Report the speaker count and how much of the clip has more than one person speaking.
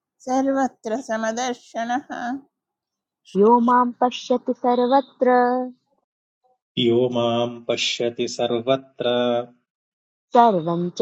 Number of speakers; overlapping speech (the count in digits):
3, no overlap